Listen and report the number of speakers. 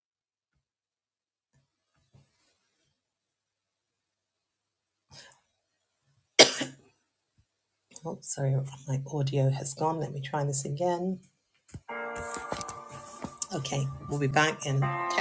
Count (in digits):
1